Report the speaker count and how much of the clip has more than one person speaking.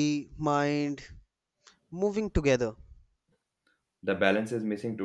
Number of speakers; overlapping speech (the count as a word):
two, no overlap